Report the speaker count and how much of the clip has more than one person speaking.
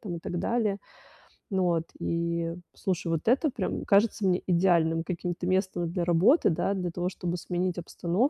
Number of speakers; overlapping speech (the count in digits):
1, no overlap